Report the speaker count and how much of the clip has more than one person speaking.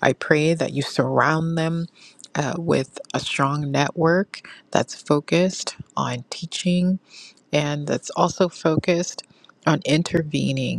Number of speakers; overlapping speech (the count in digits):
1, no overlap